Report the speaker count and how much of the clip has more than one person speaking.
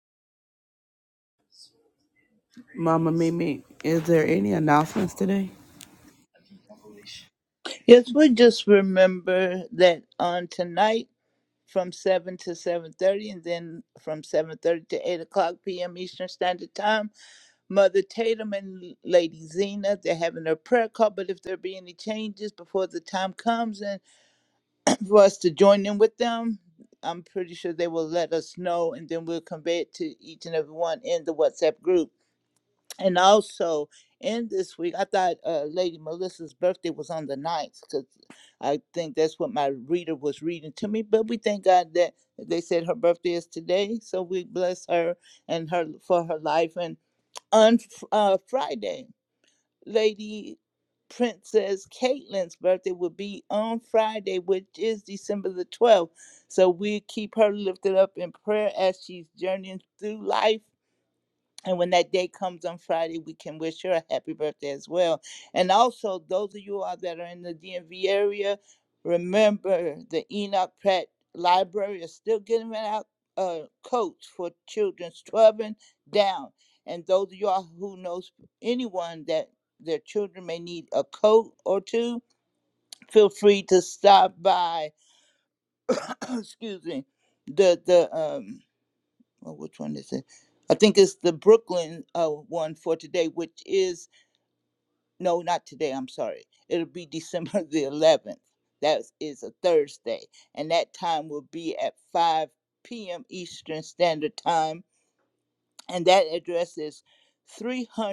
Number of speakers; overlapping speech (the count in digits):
2, no overlap